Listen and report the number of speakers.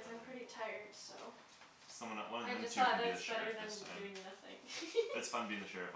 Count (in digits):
2